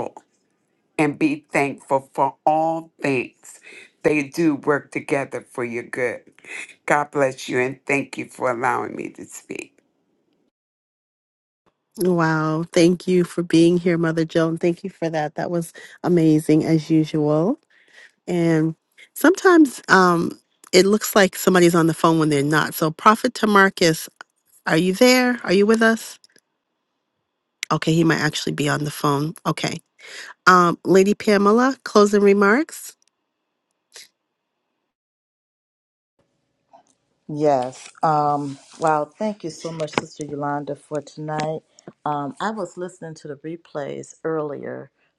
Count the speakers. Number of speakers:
3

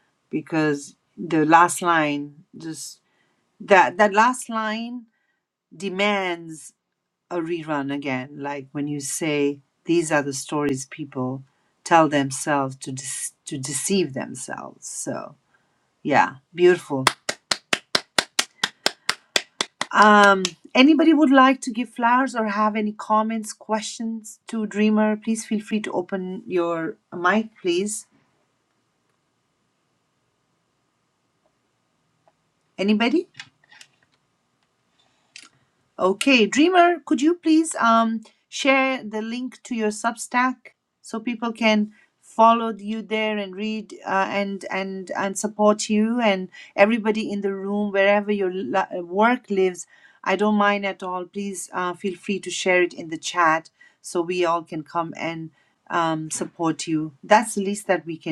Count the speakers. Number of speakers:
1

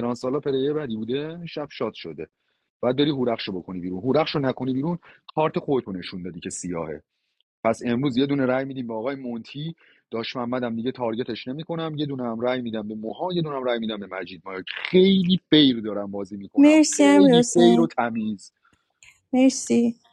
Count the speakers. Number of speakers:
2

